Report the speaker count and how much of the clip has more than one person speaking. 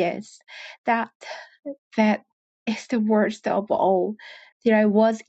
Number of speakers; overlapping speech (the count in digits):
1, no overlap